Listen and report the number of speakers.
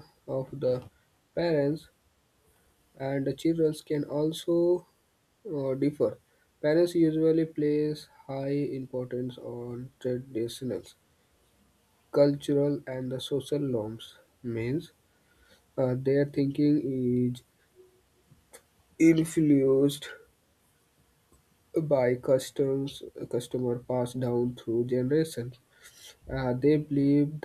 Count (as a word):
one